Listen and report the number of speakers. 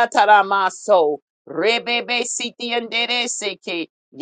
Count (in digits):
1